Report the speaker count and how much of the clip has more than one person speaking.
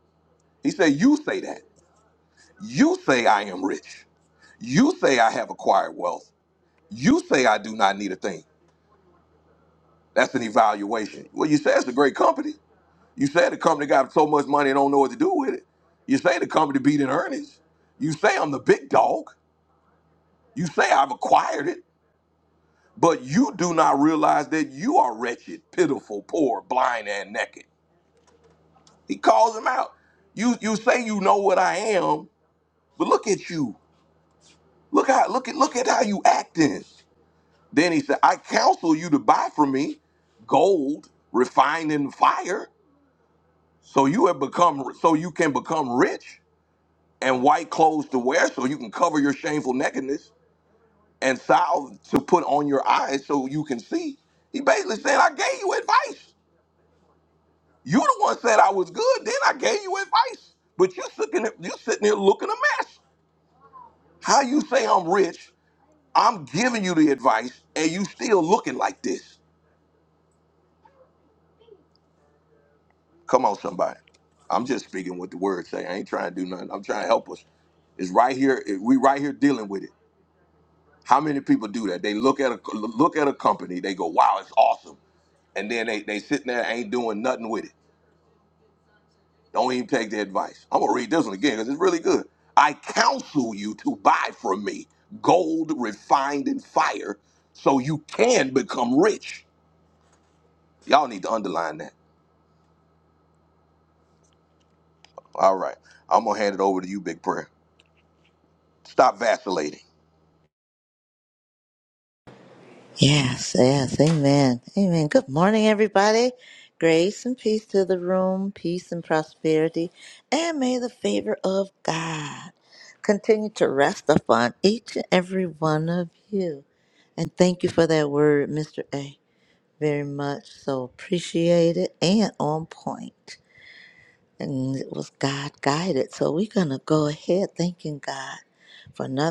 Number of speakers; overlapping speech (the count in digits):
2, no overlap